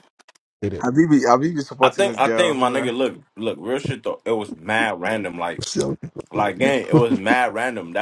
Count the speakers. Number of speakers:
three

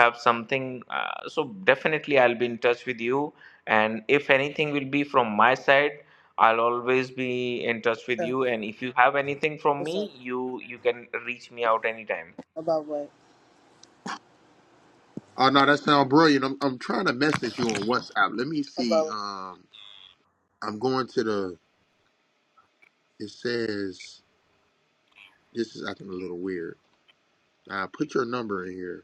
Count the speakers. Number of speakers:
three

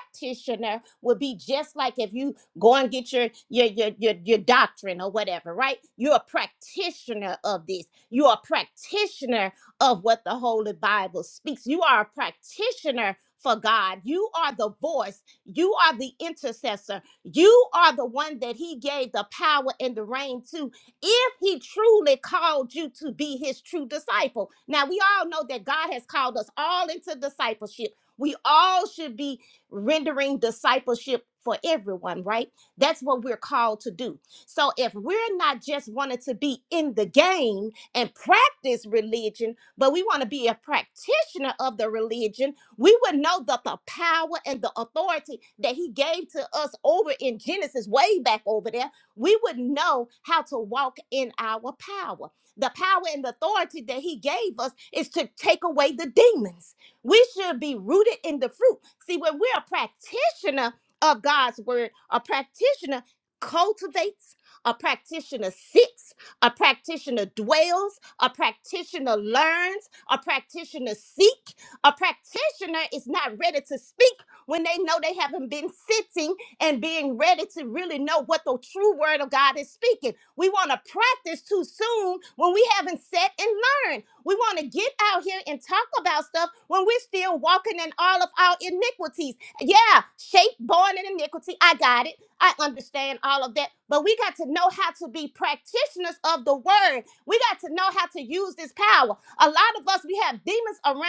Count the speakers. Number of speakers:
one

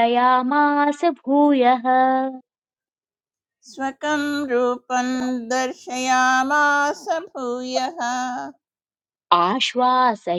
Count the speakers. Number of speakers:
two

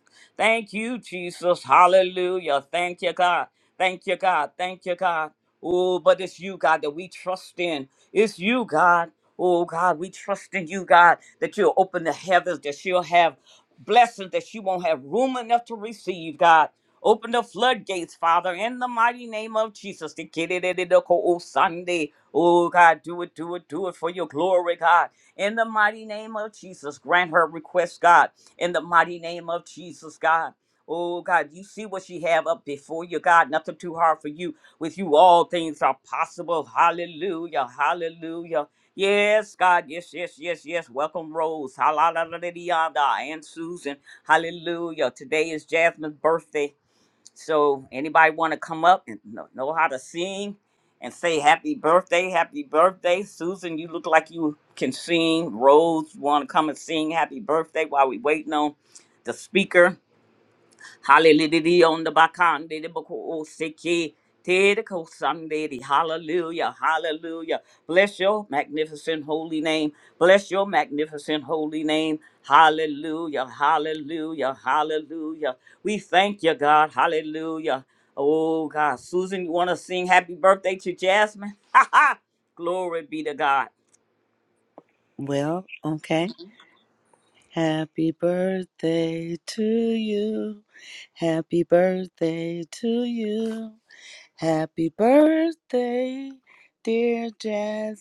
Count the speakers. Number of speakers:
two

